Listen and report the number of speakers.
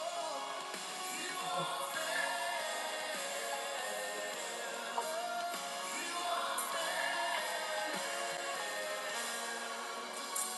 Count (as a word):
zero